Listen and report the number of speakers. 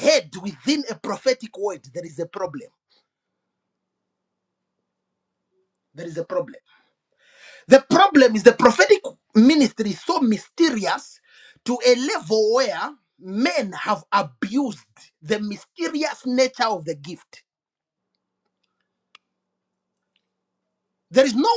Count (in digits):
1